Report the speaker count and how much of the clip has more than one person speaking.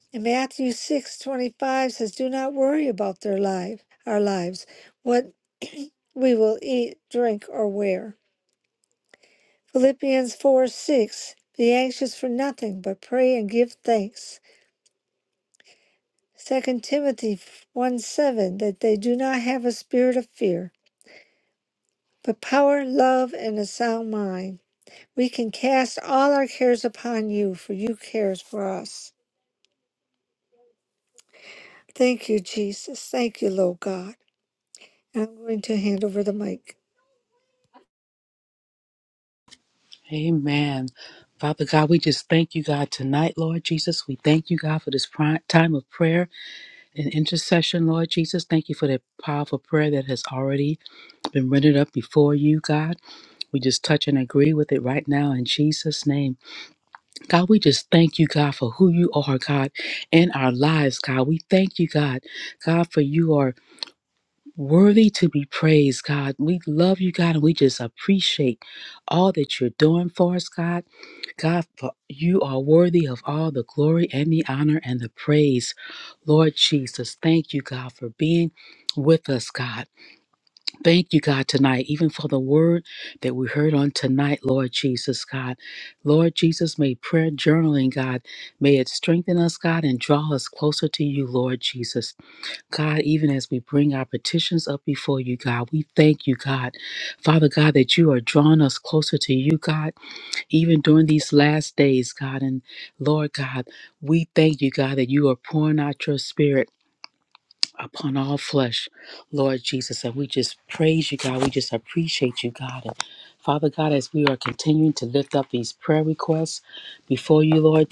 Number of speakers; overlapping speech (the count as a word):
two, no overlap